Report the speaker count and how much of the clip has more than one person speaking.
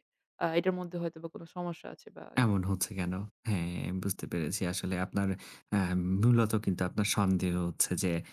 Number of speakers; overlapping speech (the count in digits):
2, no overlap